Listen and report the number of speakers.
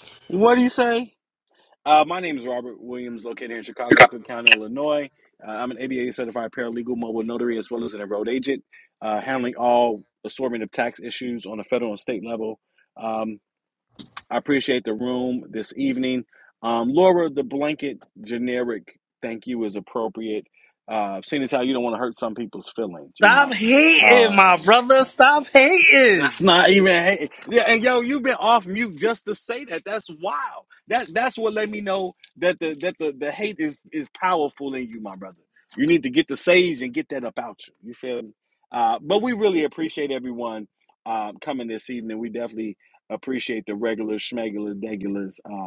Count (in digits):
2